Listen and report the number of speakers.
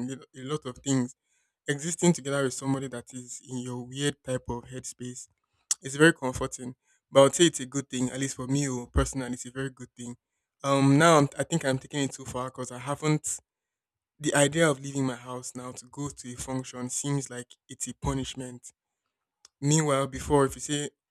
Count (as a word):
one